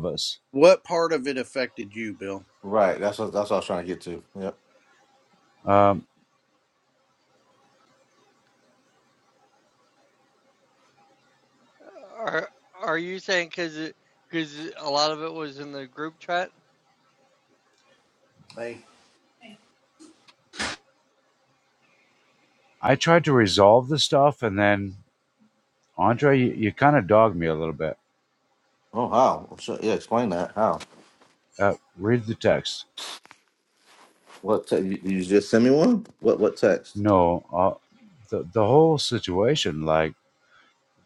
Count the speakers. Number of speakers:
4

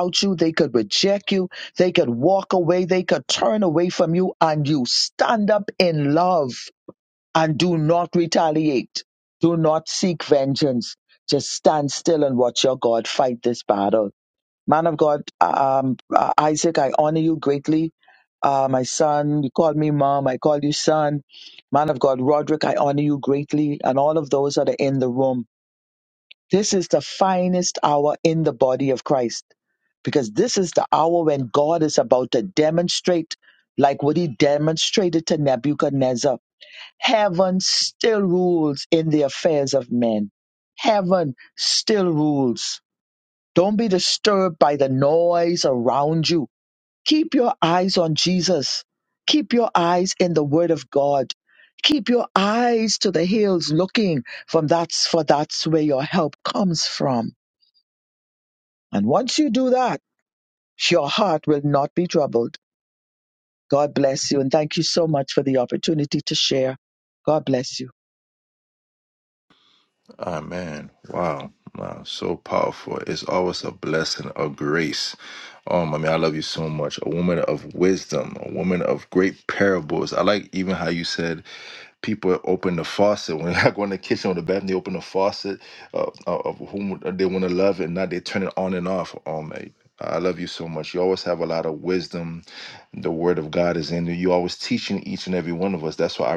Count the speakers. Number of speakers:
2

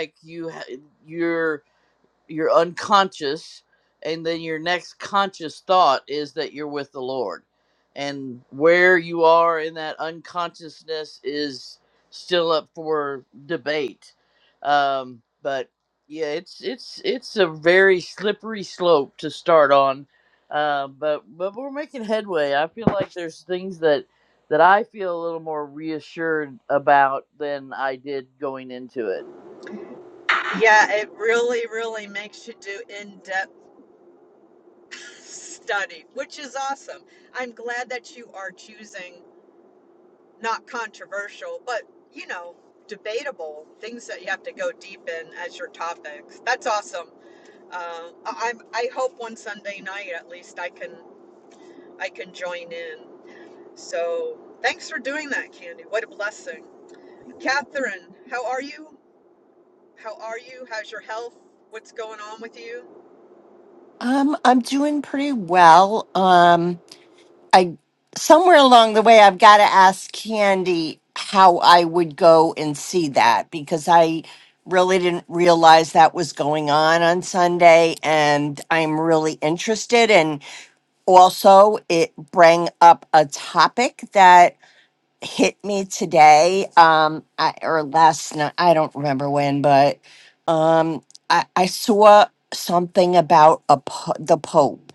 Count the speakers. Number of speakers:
3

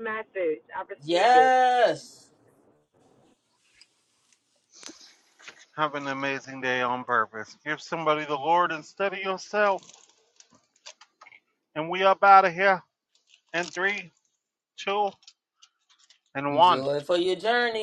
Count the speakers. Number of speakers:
3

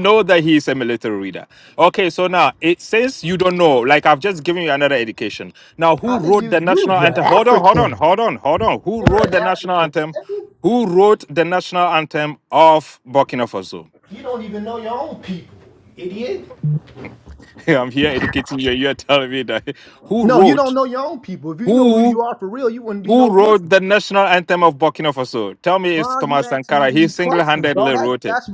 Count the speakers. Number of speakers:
2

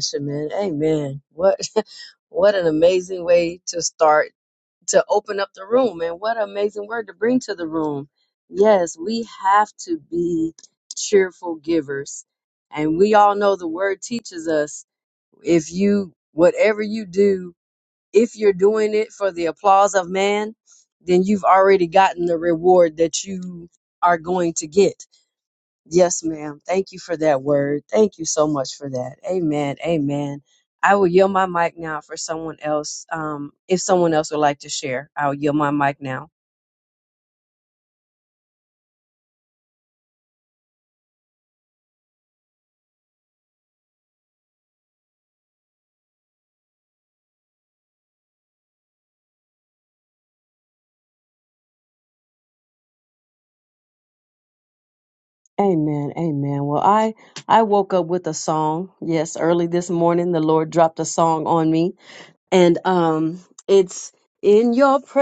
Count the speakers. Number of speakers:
1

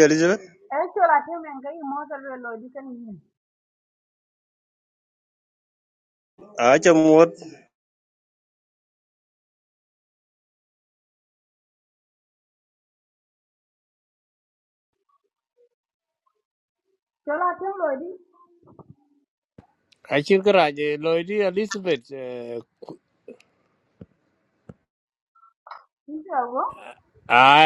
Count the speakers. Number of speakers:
3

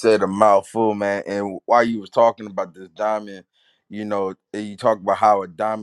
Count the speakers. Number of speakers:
1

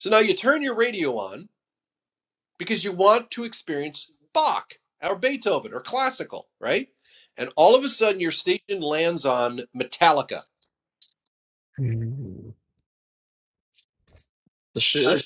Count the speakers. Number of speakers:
2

